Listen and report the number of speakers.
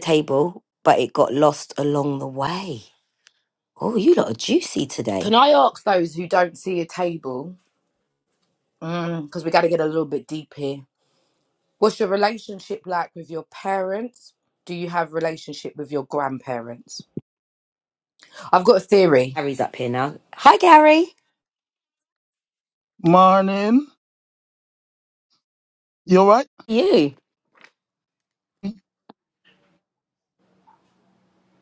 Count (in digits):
3